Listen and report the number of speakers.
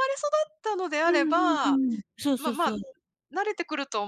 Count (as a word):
two